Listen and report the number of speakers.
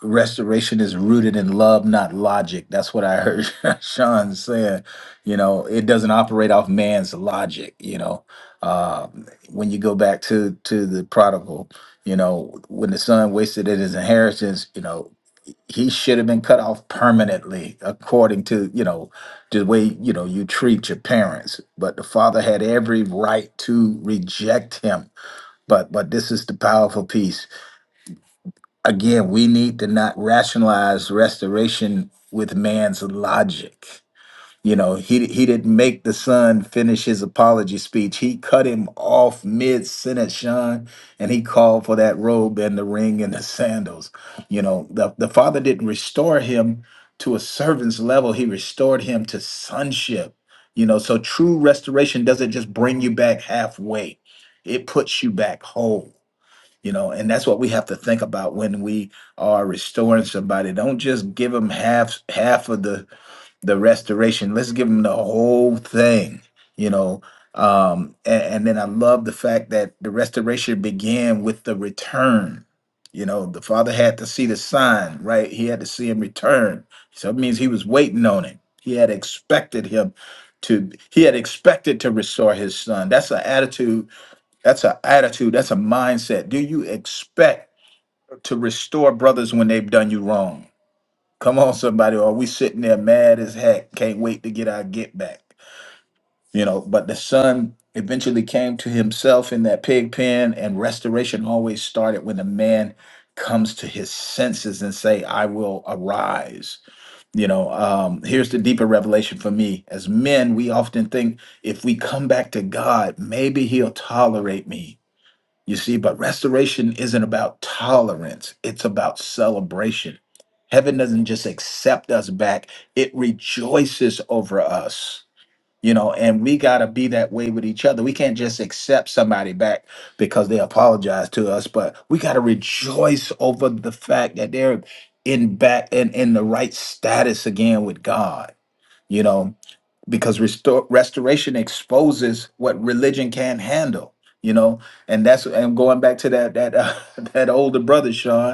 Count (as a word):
one